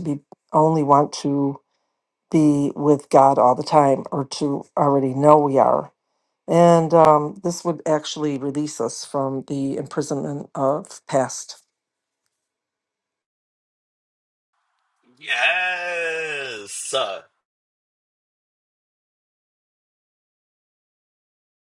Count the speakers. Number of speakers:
2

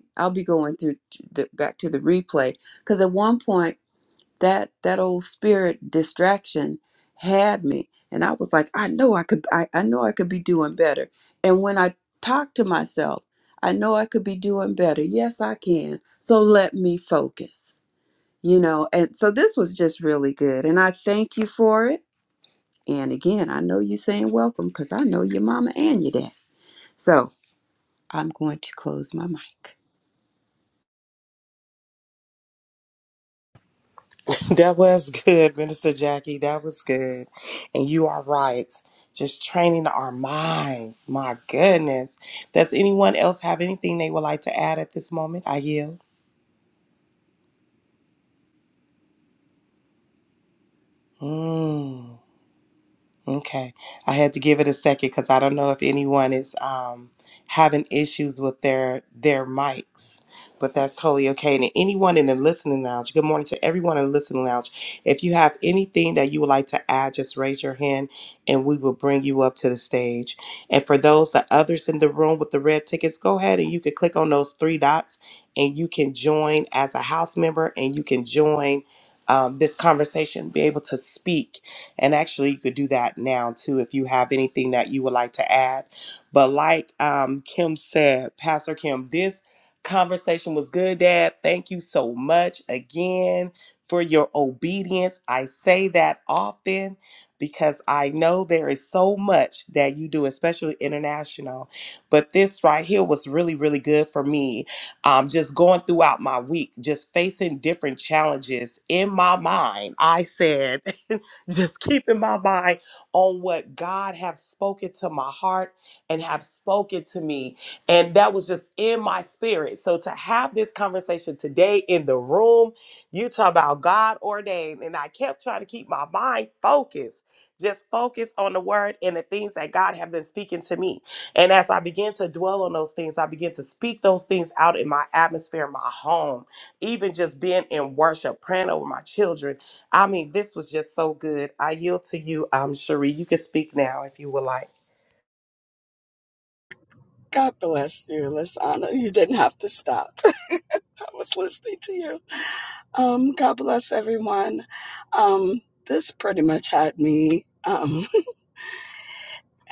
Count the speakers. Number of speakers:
3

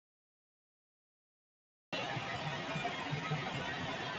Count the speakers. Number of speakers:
0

